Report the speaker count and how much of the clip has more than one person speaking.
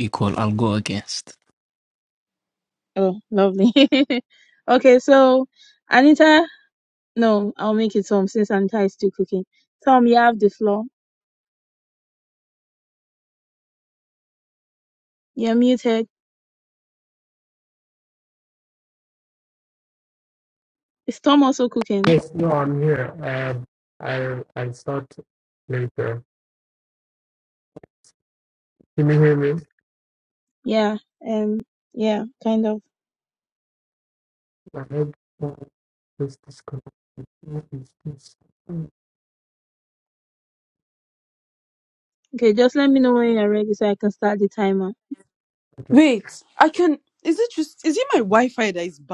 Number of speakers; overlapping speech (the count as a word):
four, under 1%